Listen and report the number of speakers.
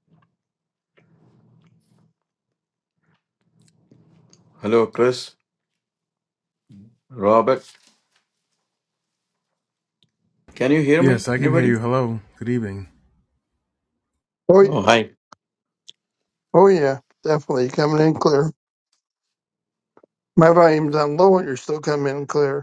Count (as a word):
three